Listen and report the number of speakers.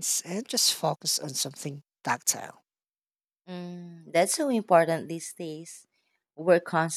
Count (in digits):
2